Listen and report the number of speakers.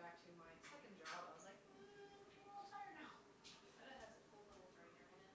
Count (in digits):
2